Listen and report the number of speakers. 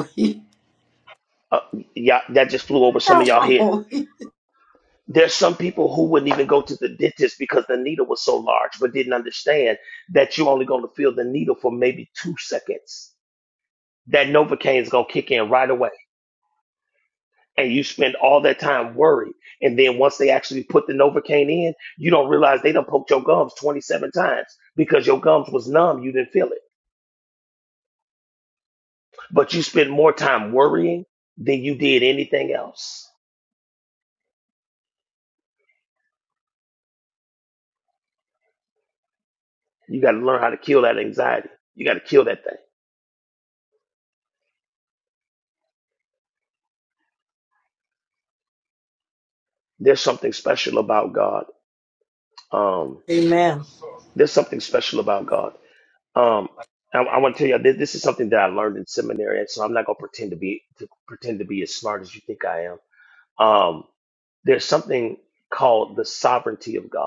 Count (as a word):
two